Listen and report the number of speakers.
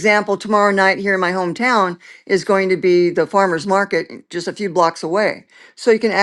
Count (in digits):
1